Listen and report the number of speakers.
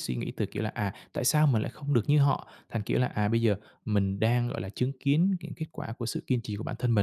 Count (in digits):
1